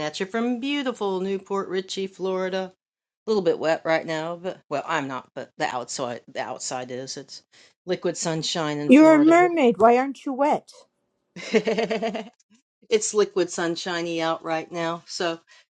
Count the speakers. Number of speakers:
two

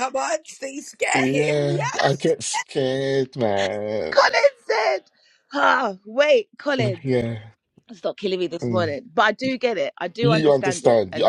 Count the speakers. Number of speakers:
three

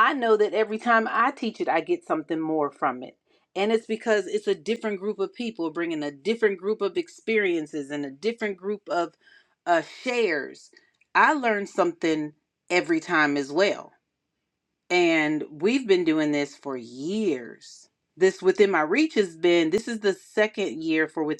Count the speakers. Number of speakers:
one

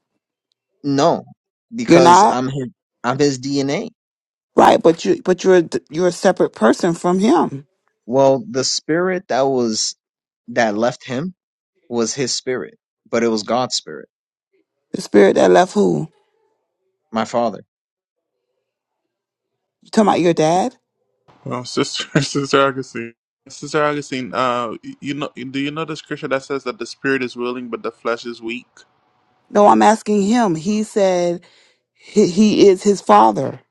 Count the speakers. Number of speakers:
three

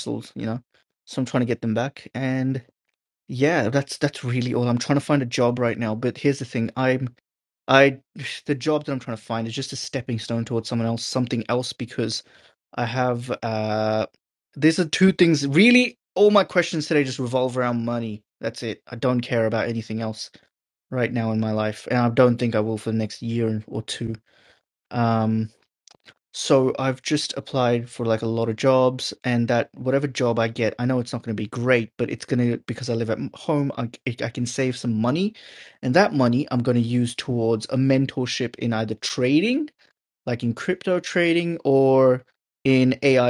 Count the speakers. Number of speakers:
one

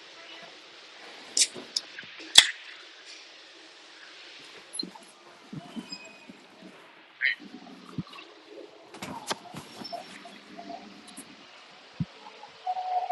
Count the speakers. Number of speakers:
zero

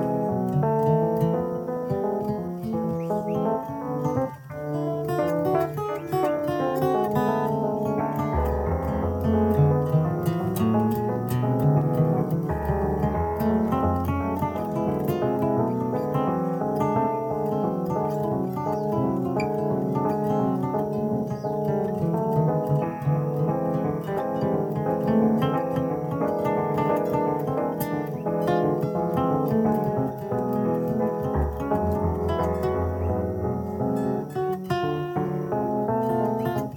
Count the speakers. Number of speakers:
zero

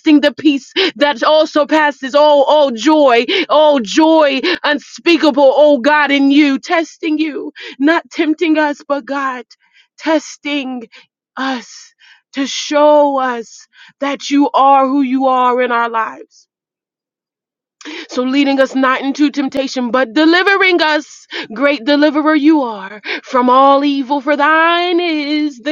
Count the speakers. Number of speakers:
one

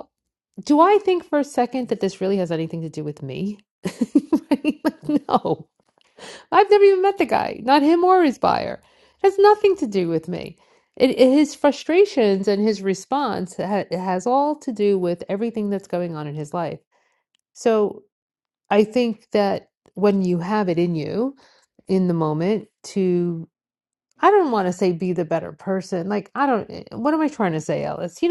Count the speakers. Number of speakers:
one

